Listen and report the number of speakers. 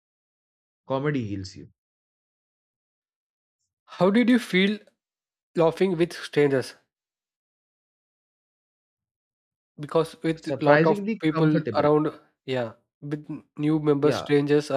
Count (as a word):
two